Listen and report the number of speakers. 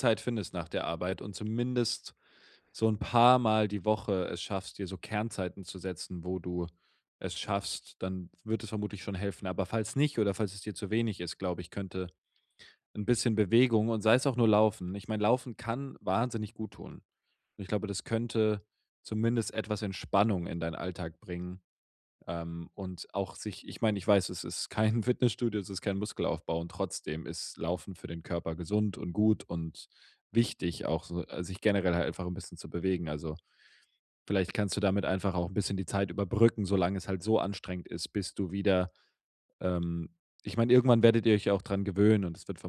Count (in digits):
1